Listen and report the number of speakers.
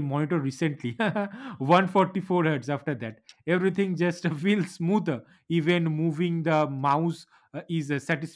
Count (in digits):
1